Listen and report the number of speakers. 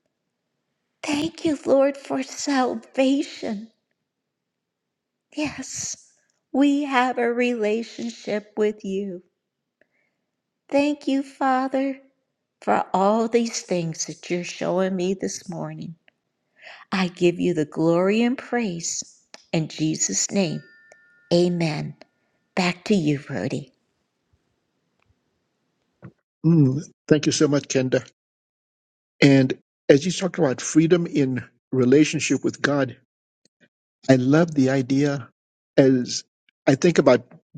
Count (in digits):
2